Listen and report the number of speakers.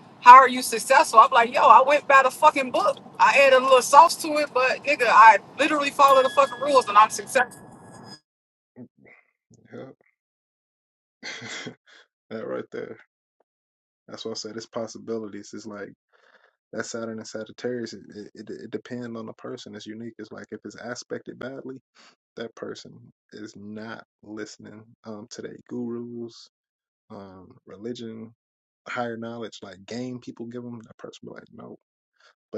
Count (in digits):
2